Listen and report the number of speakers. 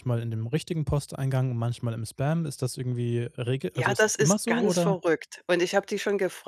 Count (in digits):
2